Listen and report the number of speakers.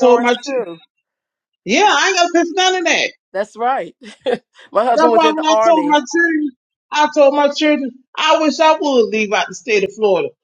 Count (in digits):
2